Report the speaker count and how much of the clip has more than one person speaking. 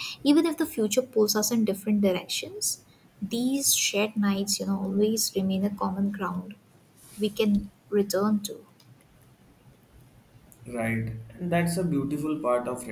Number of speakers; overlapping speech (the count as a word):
two, no overlap